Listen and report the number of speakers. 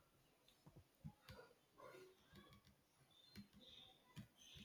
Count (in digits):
0